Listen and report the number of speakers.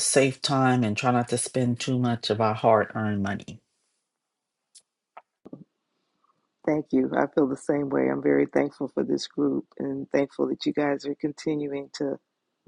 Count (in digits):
2